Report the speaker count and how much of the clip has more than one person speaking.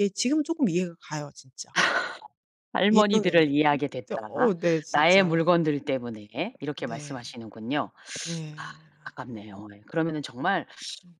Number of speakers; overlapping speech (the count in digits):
2, about 15%